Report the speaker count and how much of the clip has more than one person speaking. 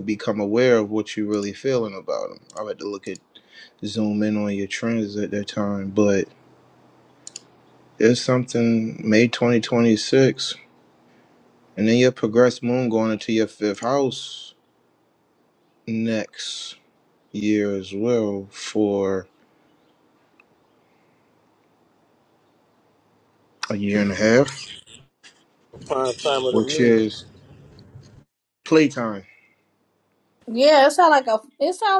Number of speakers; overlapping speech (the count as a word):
three, about 1%